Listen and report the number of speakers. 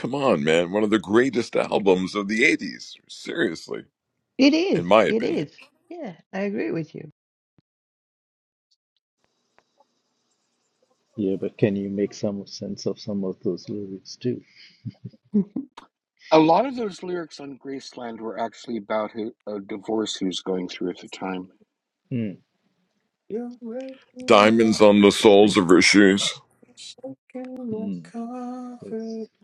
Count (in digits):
5